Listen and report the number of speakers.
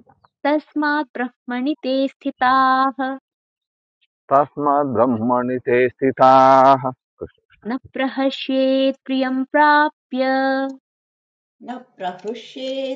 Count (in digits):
3